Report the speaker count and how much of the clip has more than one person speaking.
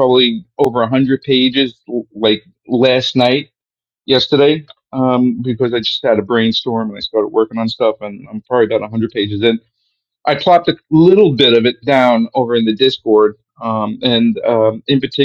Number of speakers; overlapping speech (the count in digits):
1, no overlap